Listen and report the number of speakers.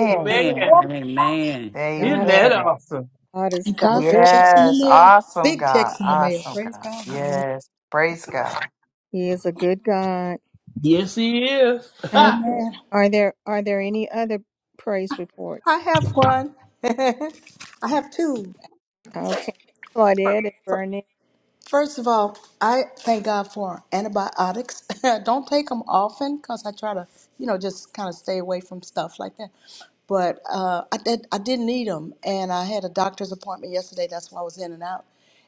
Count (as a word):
five